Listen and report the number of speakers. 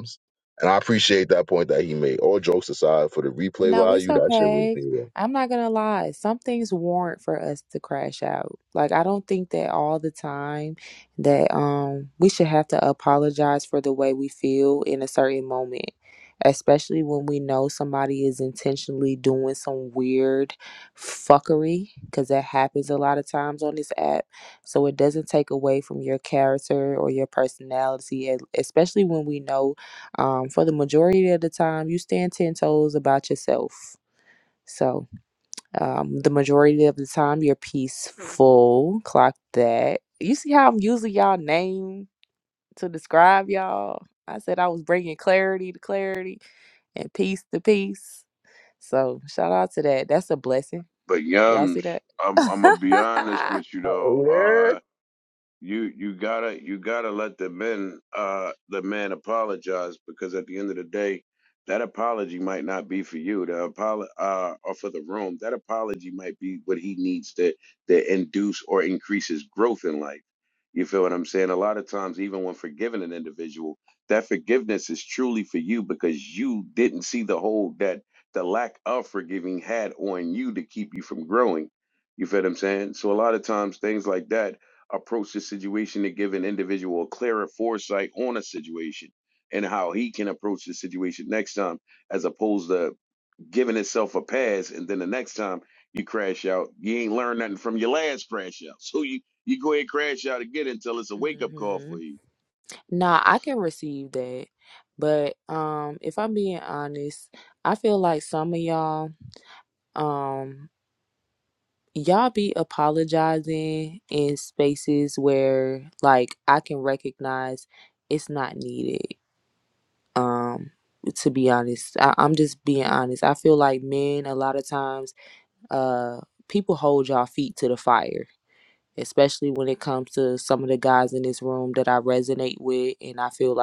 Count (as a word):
three